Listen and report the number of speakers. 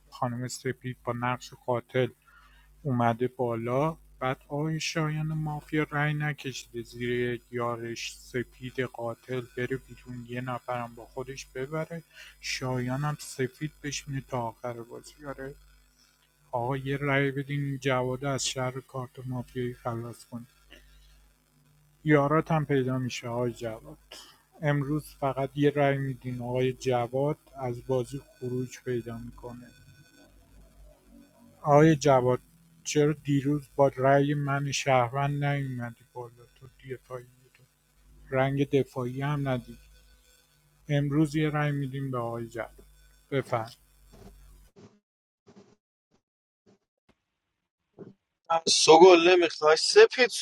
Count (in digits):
2